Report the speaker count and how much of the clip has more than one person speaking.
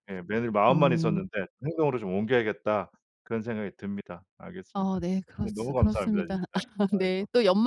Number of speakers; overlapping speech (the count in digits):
2, about 27%